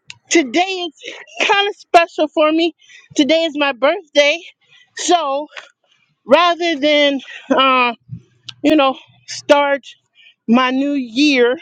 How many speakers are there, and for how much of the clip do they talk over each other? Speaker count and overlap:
one, no overlap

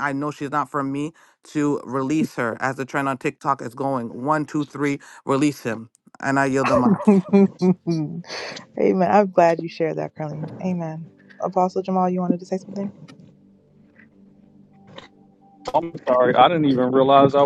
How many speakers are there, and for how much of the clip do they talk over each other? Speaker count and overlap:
three, no overlap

